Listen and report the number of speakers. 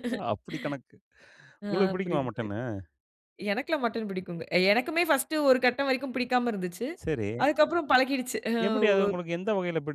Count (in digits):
2